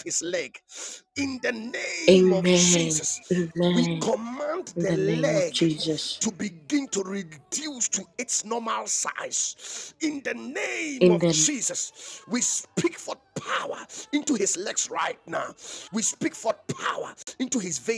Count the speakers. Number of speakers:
2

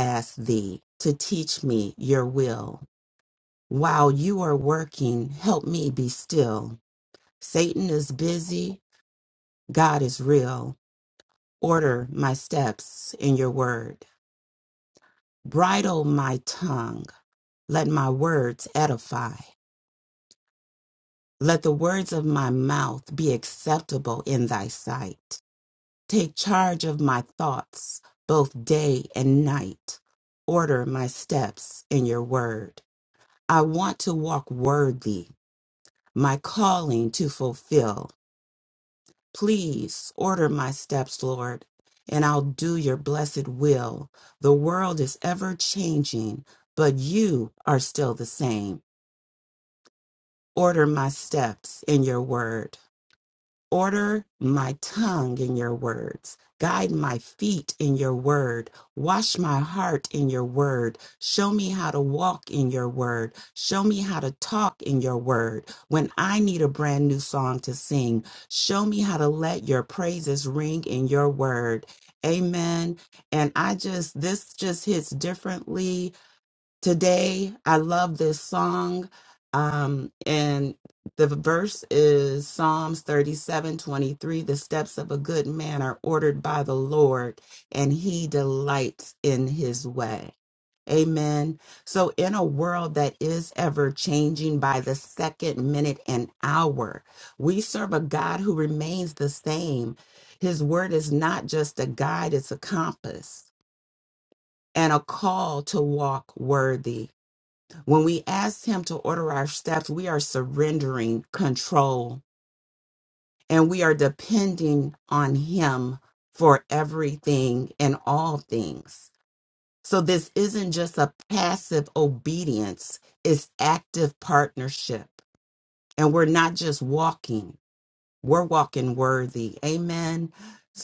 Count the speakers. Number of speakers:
1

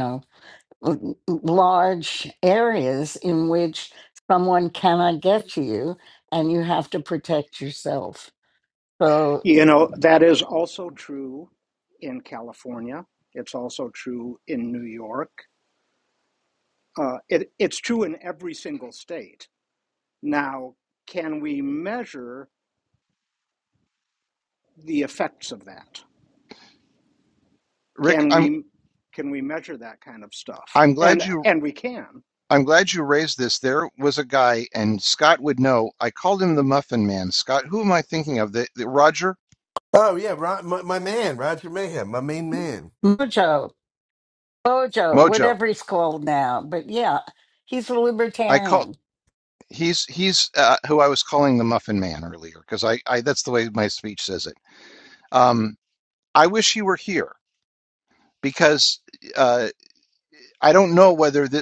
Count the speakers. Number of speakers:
4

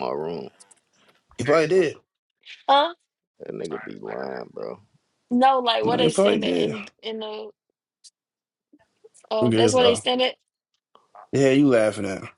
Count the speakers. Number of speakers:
3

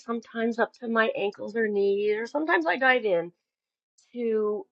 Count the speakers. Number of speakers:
1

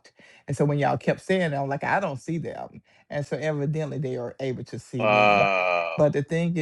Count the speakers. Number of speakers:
2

